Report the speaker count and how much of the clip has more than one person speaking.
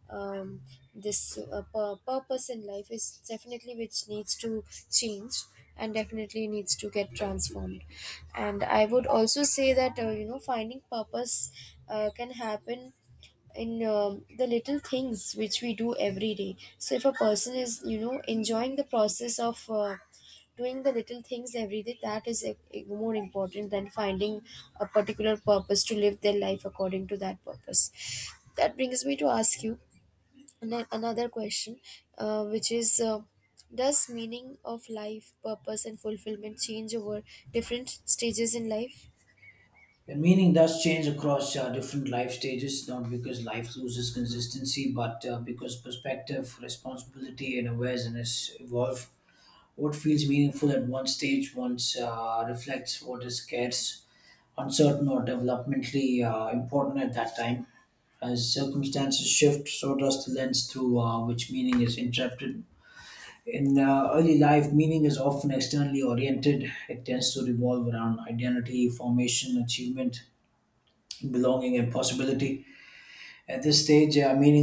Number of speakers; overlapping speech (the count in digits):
2, no overlap